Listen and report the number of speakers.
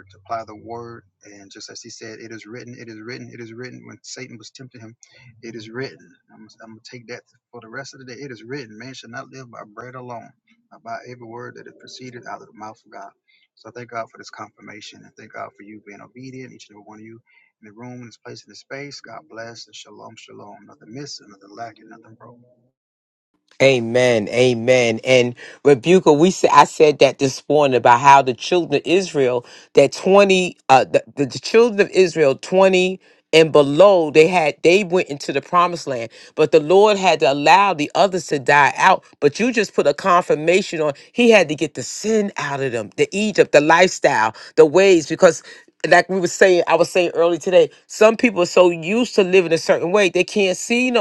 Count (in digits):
2